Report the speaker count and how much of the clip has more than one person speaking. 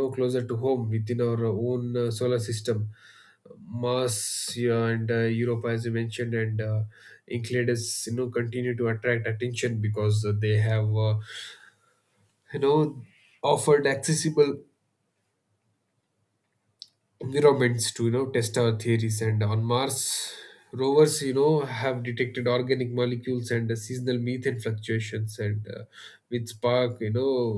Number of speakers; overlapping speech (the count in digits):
1, no overlap